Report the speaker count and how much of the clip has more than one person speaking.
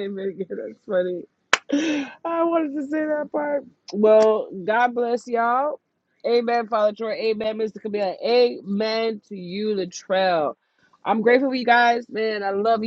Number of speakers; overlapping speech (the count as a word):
one, no overlap